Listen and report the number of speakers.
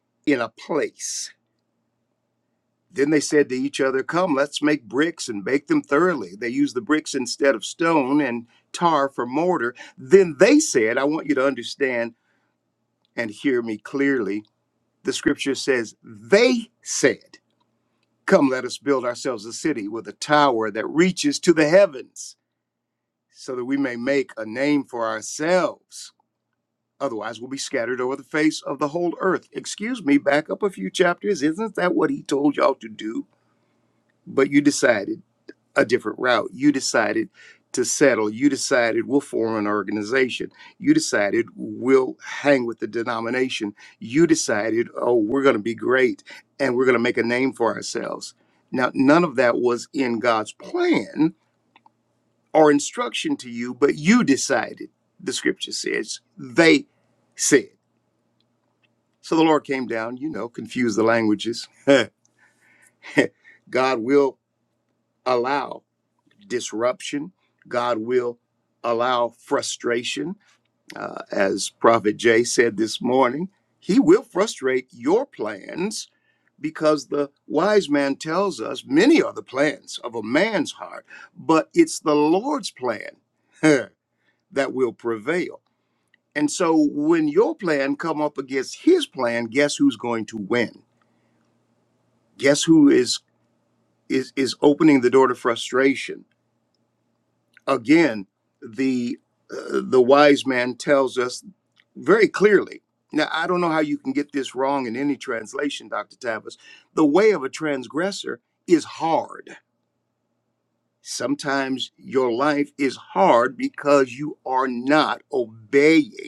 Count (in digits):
1